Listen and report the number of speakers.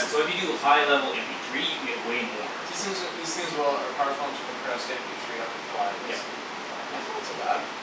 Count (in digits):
2